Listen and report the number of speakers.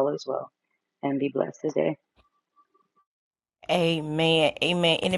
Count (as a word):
two